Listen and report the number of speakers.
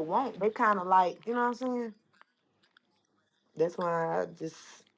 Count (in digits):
1